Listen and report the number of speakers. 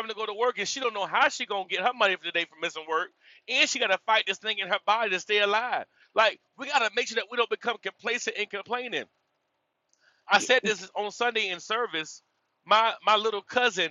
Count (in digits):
1